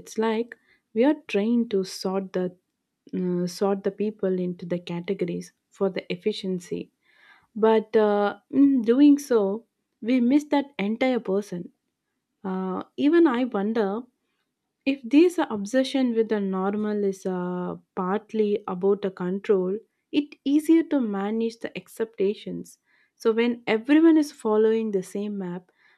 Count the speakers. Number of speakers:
1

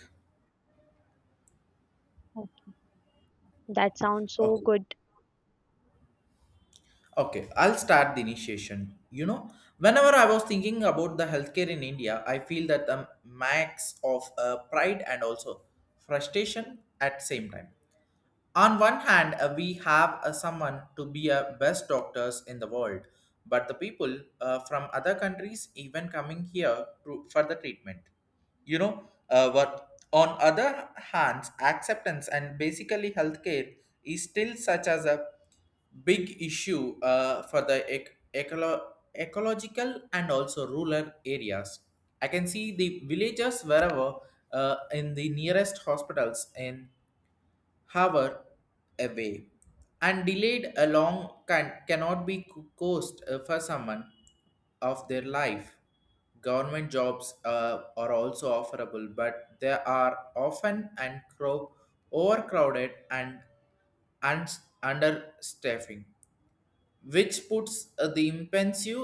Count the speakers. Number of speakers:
2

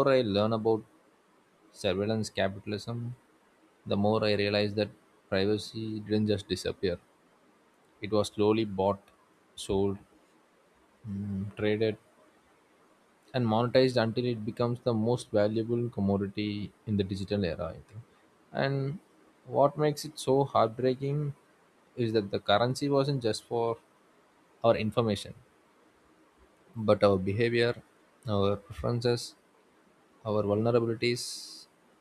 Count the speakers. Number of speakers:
1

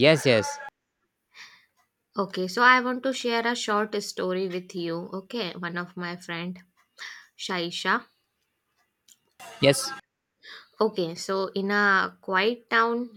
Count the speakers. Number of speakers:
2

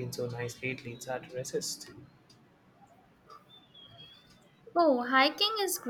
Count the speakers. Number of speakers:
2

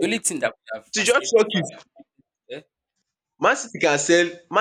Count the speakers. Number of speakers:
2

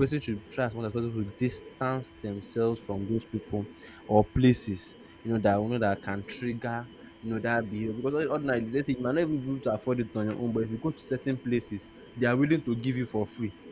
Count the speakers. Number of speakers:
1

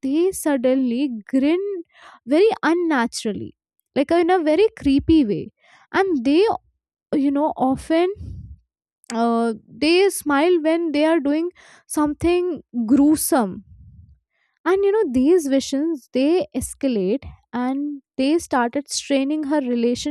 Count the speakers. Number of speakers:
1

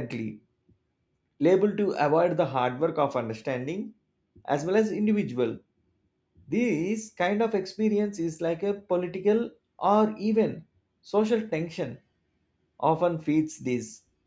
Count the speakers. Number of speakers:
1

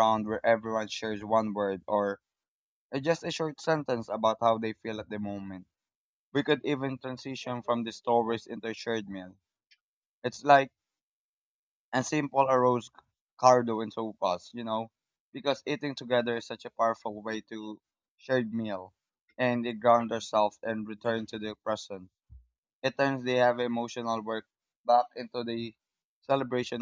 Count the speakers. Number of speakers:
1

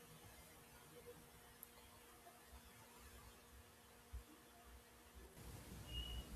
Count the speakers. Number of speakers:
0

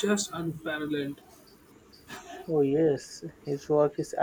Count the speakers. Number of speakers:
2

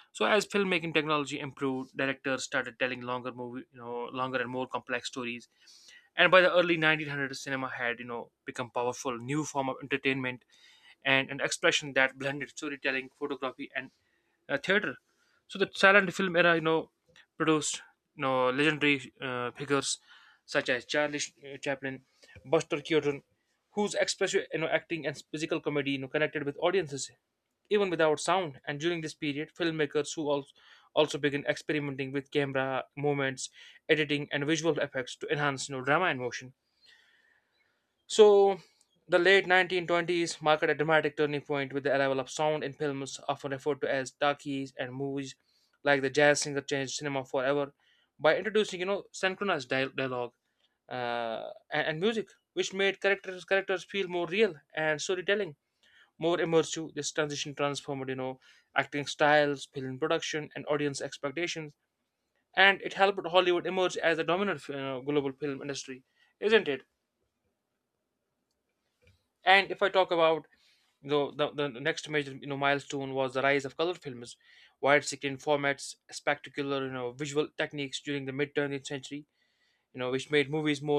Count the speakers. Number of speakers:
1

